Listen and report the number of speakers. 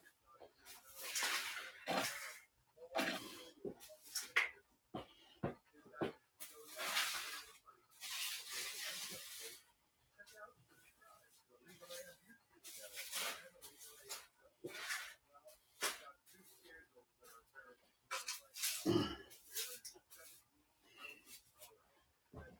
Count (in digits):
0